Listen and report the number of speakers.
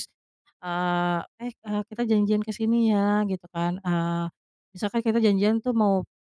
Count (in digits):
1